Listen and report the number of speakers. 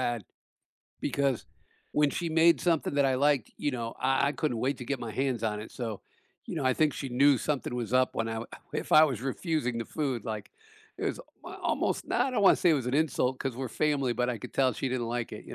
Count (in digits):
1